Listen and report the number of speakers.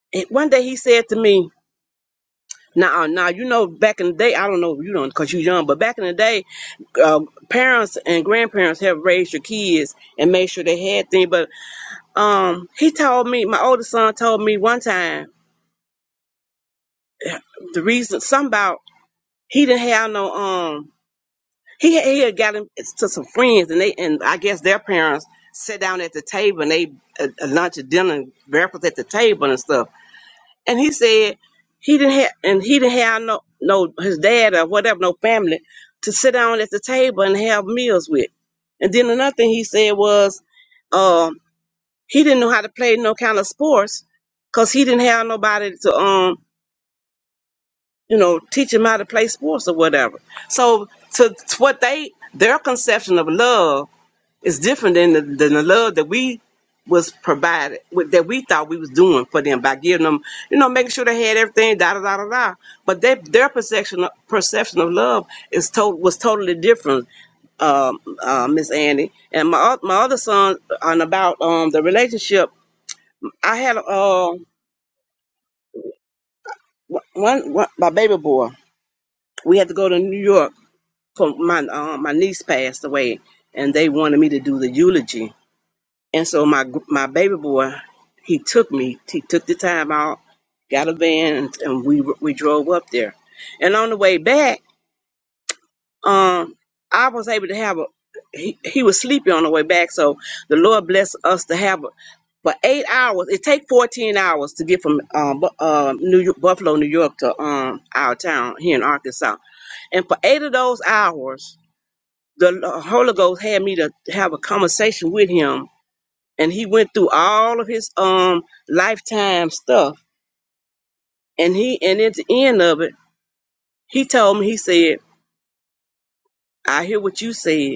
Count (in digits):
1